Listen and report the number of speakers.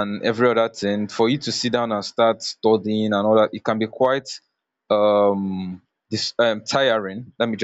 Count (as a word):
one